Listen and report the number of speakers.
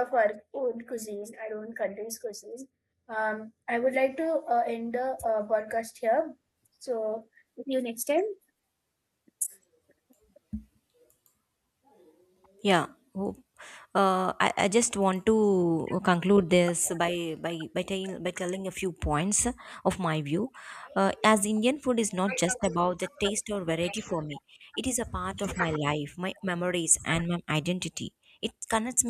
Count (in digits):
2